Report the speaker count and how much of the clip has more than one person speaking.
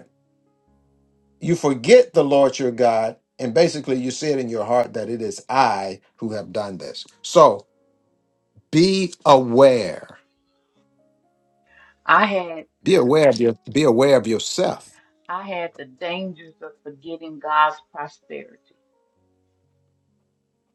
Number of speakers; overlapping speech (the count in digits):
2, no overlap